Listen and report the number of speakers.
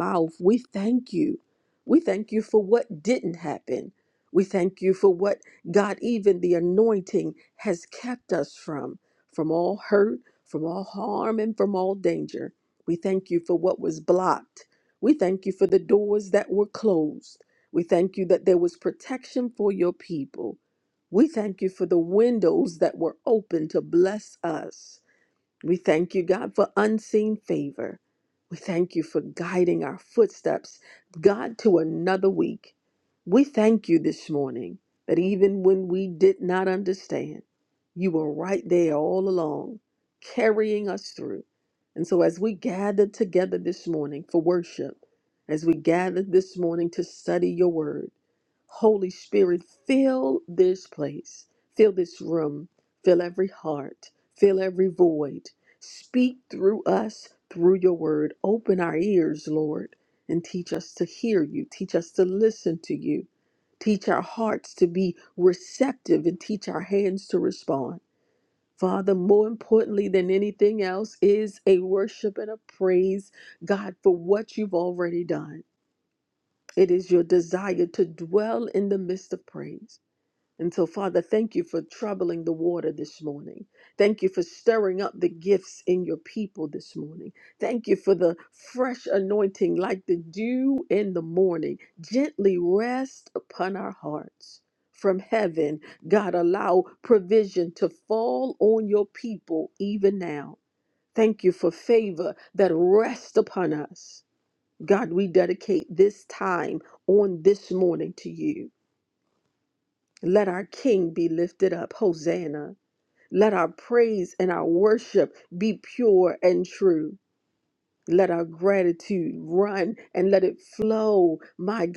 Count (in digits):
1